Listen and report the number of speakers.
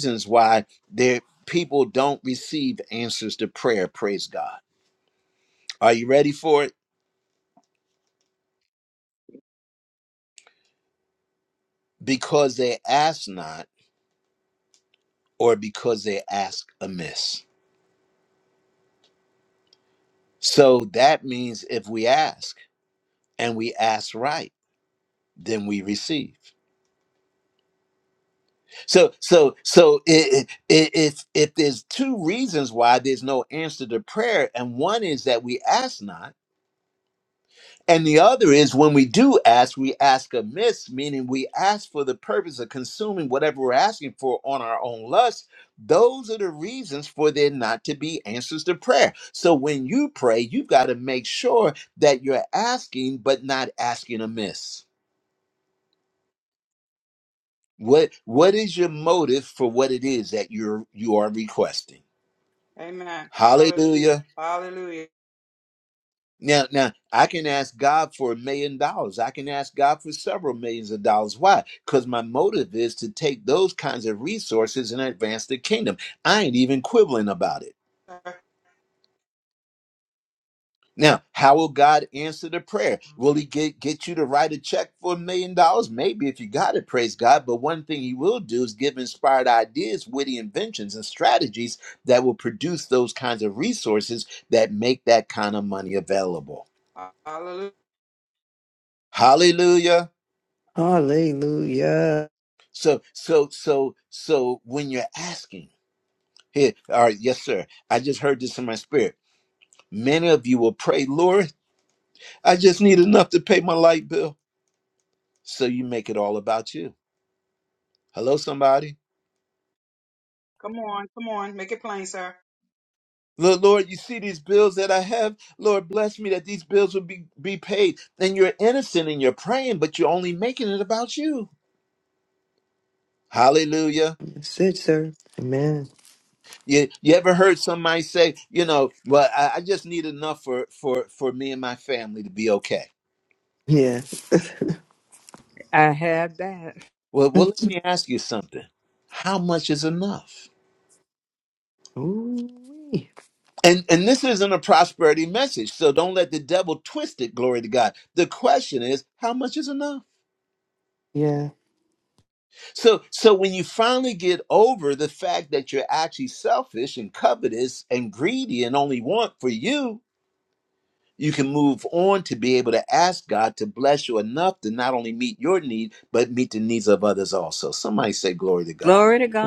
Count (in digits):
4